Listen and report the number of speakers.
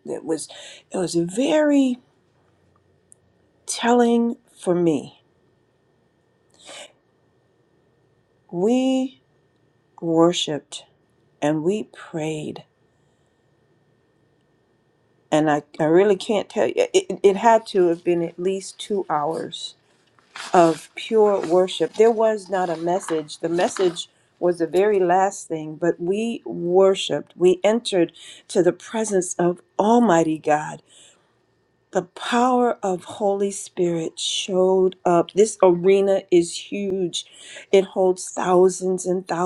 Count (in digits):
1